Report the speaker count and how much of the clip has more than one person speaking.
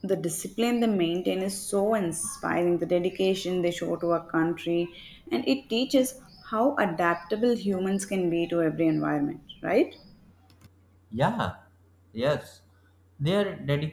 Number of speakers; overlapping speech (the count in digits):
2, no overlap